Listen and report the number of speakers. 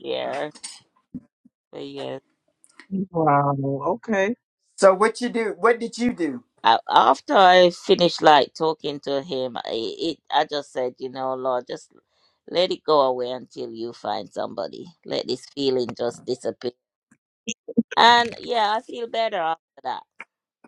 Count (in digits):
3